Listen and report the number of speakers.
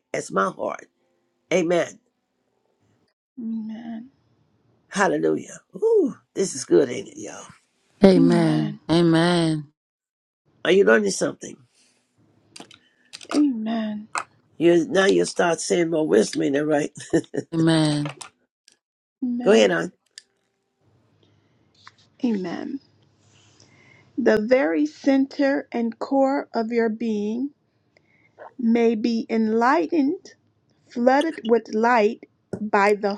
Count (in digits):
3